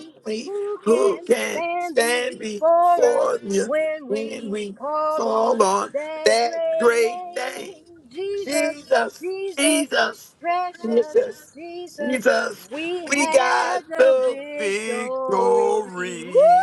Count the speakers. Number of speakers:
2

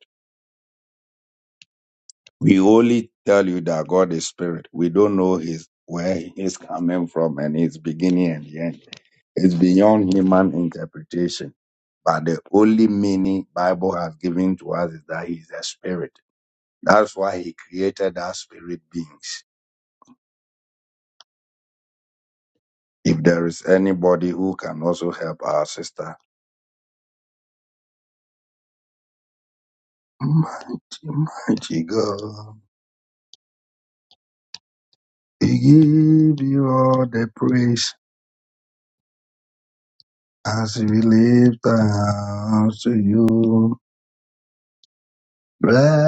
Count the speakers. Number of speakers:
1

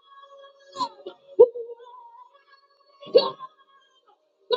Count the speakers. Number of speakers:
0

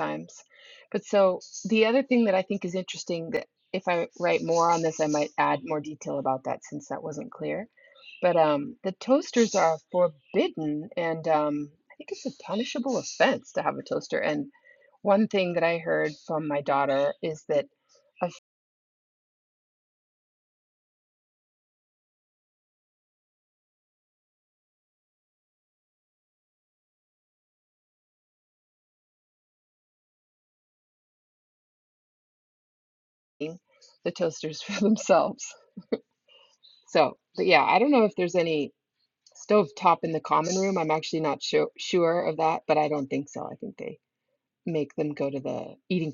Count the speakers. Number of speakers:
1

